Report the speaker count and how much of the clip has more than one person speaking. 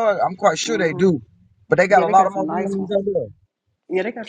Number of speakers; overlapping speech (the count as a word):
two, about 35%